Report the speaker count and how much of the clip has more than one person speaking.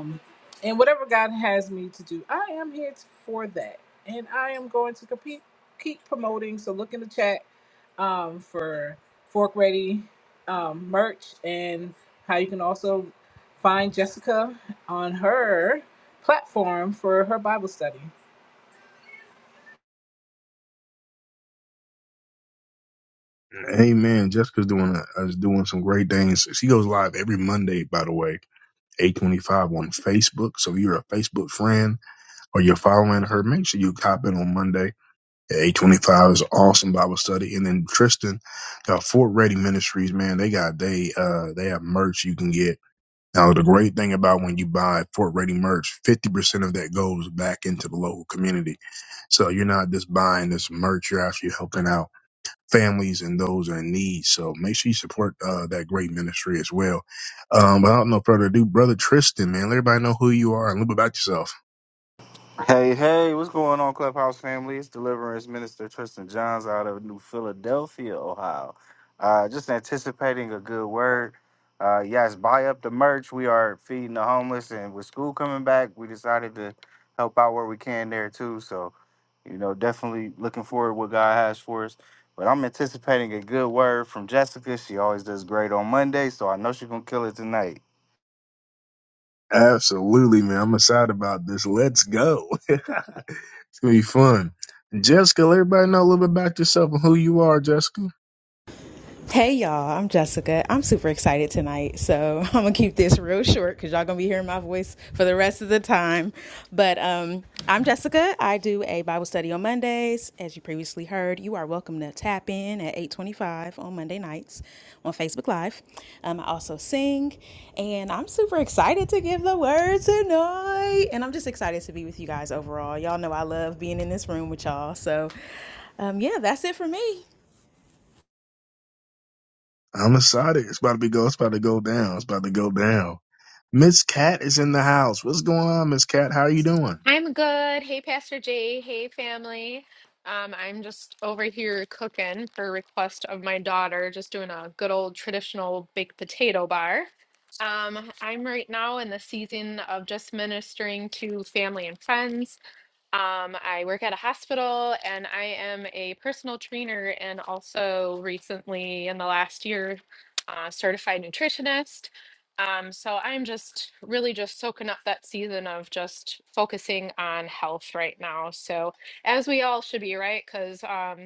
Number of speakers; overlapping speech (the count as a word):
five, no overlap